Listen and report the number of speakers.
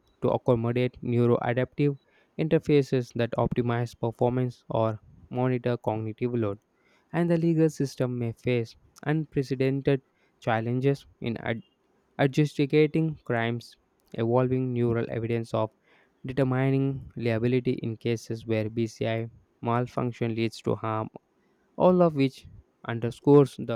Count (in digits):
1